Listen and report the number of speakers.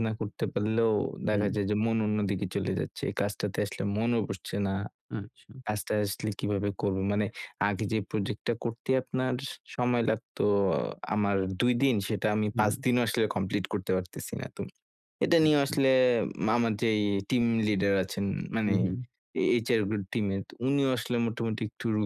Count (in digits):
2